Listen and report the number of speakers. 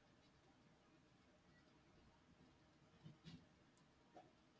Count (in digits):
0